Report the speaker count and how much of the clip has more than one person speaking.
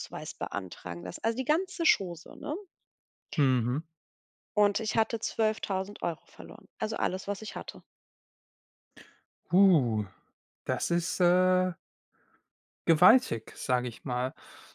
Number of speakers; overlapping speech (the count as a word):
two, no overlap